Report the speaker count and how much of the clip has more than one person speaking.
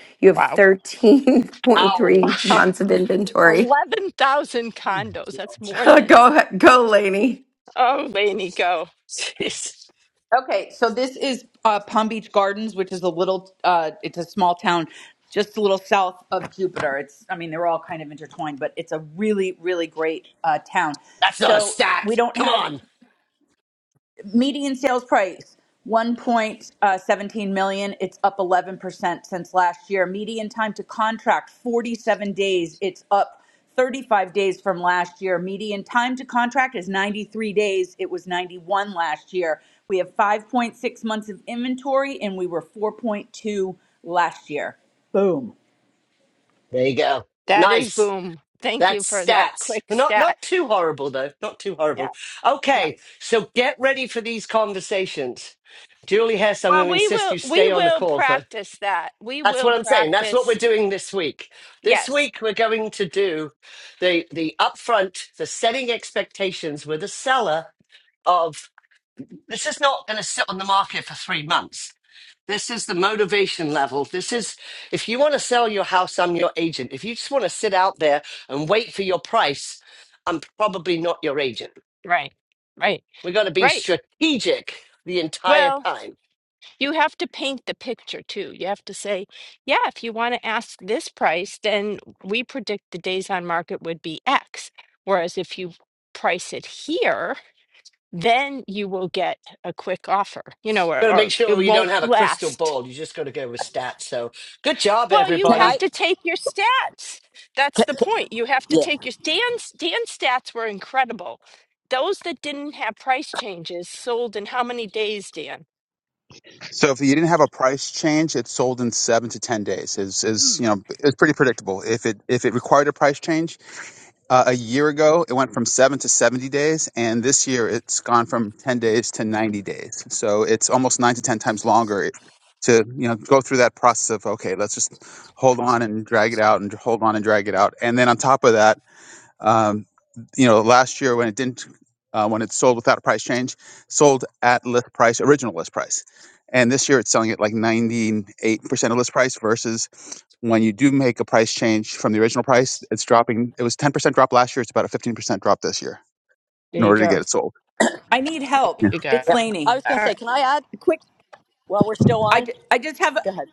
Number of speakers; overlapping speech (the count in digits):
6, about 8%